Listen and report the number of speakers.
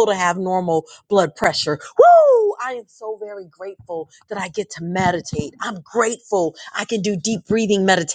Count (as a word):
one